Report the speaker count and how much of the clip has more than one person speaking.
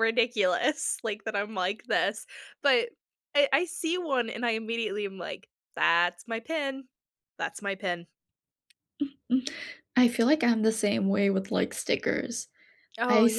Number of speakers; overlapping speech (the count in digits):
2, about 2%